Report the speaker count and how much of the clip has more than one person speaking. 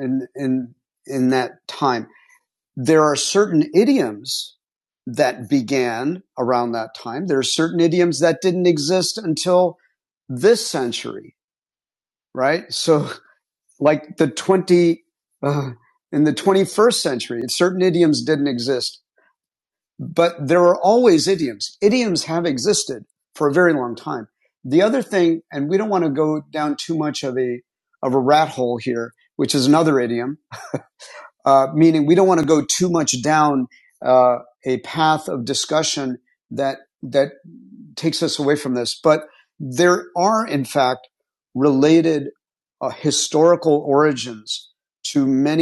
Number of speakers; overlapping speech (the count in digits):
1, no overlap